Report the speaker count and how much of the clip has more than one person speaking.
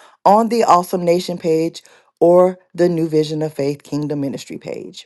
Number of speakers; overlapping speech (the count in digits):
1, no overlap